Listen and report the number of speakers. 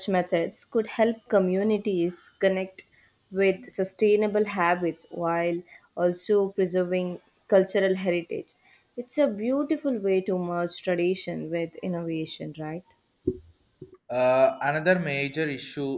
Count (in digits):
2